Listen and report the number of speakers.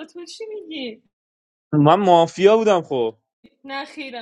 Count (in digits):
2